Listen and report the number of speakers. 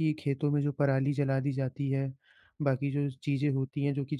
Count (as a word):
one